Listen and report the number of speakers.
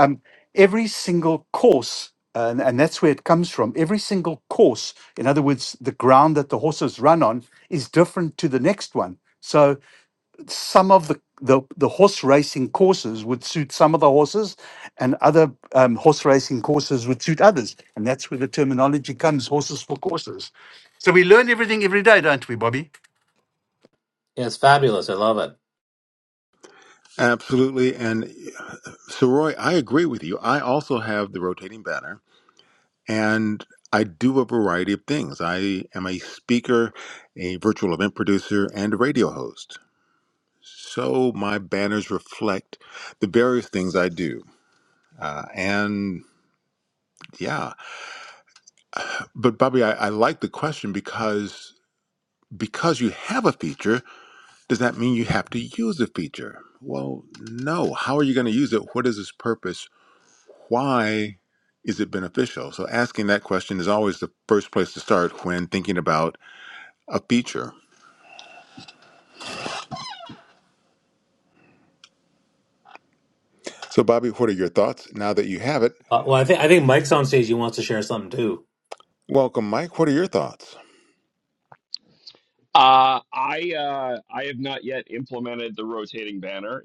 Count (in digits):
4